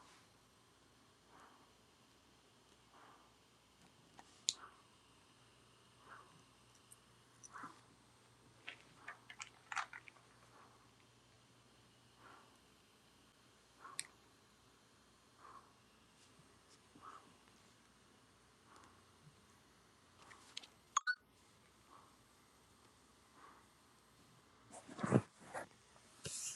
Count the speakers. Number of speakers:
0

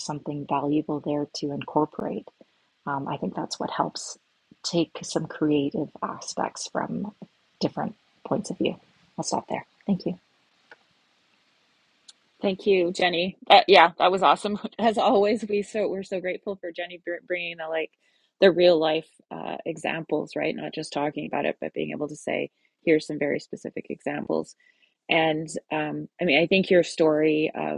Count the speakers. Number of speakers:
2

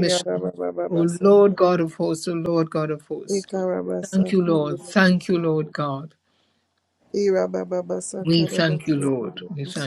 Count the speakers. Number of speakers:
2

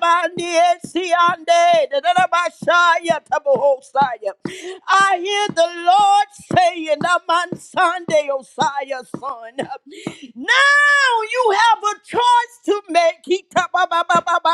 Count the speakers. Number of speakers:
1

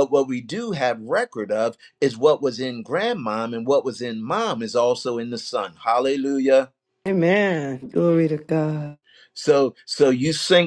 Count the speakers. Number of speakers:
2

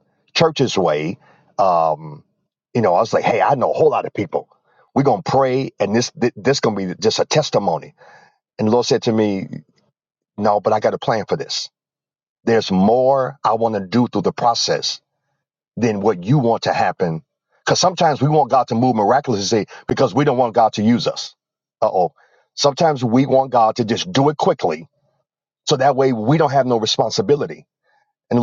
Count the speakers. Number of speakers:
1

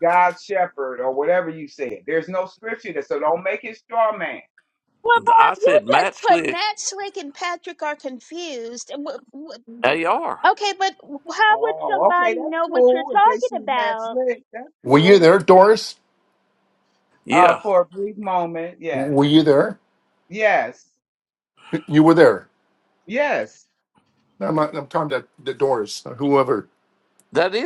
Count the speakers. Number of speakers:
4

